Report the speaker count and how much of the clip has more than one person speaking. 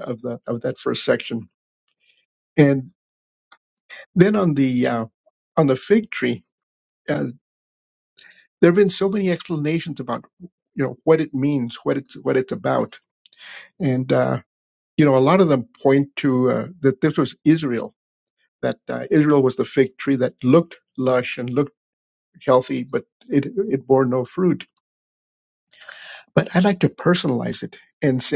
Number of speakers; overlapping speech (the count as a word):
one, no overlap